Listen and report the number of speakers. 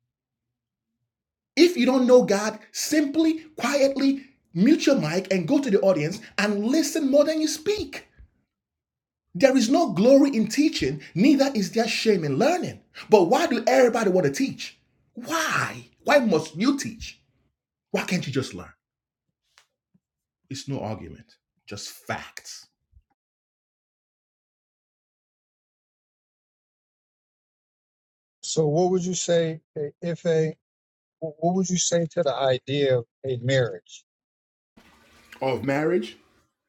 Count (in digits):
2